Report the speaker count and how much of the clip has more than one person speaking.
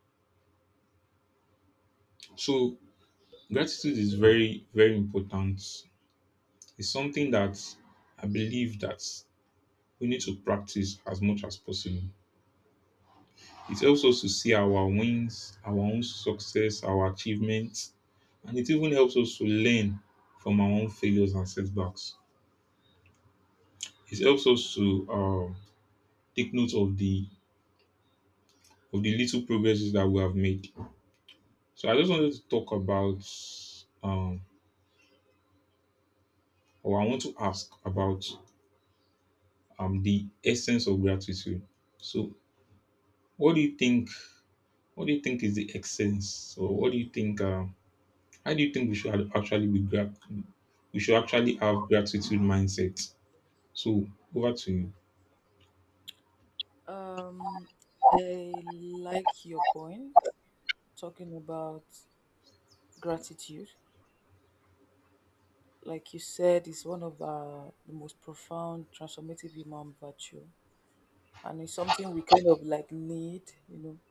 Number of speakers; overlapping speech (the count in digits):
2, no overlap